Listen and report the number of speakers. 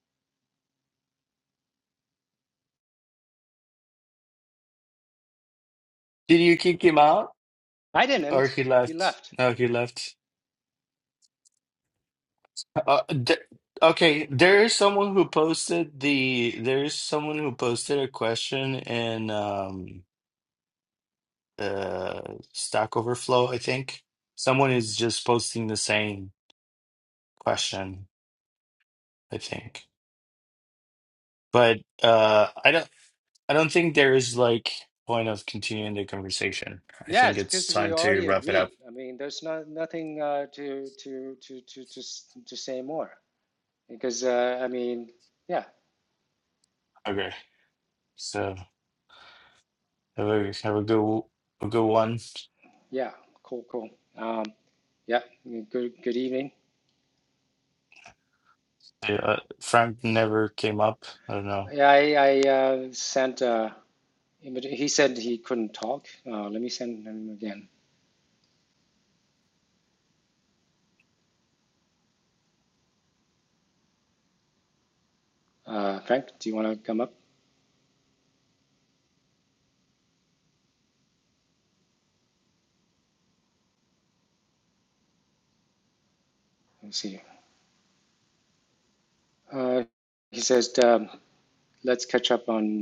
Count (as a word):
two